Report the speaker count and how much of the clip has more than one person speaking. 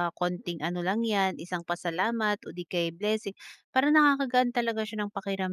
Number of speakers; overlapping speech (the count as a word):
one, no overlap